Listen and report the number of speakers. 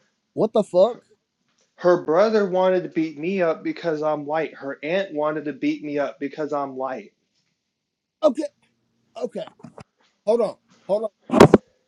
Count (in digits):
2